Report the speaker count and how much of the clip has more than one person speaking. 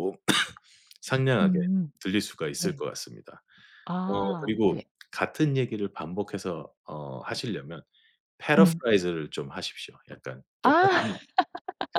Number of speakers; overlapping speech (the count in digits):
2, about 15%